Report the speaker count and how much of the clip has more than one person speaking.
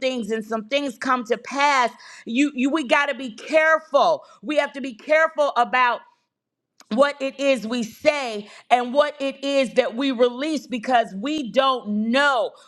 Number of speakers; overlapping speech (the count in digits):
1, no overlap